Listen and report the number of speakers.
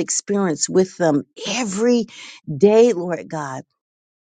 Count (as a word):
one